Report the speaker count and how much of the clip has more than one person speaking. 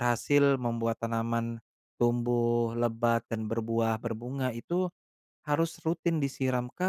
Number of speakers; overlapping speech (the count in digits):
1, no overlap